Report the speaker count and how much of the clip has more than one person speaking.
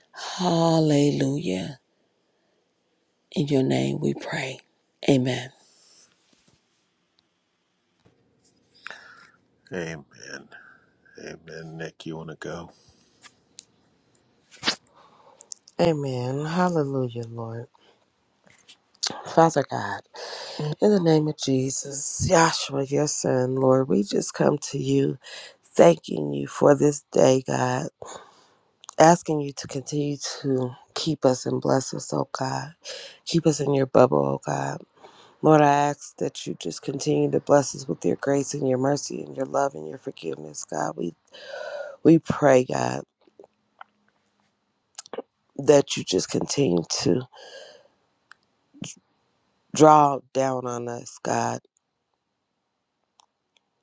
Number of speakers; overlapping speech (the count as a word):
three, no overlap